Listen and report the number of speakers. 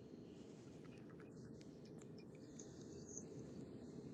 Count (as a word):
zero